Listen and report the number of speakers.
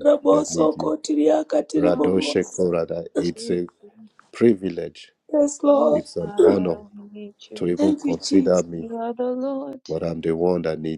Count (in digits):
3